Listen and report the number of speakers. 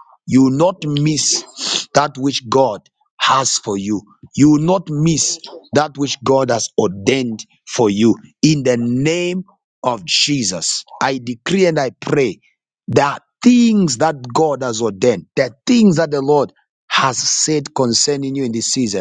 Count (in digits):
1